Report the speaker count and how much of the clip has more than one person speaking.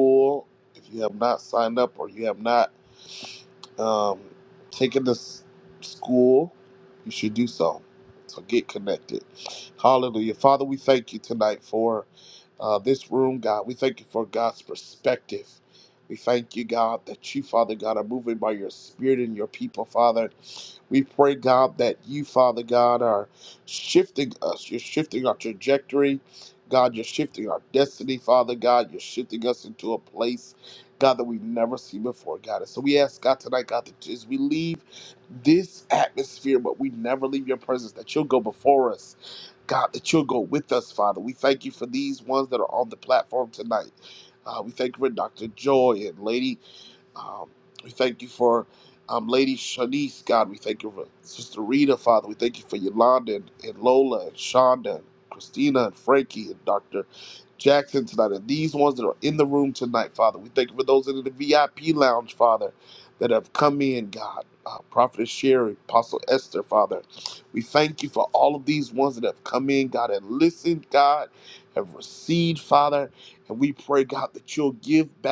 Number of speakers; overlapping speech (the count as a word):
one, no overlap